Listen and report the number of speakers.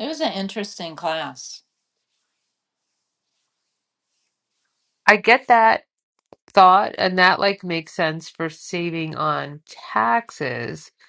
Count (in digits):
2